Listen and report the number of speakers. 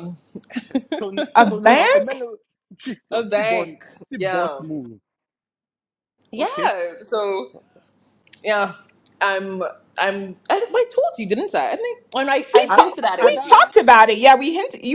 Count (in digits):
3